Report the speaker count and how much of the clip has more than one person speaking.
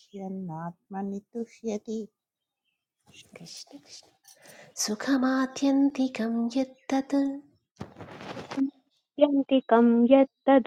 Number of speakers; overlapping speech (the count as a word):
three, no overlap